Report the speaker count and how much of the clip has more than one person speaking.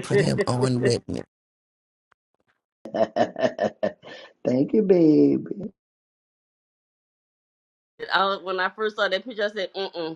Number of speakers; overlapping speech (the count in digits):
3, no overlap